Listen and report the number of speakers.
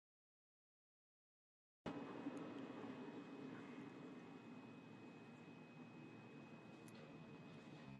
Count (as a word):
zero